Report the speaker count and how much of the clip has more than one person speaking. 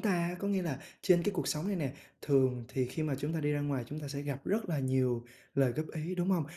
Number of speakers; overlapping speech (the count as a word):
one, no overlap